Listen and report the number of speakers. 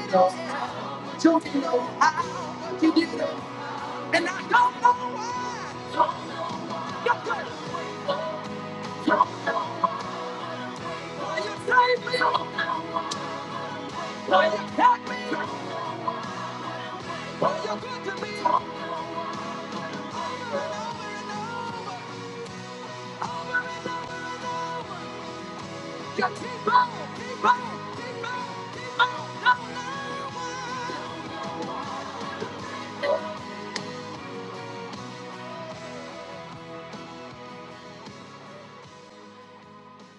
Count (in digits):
1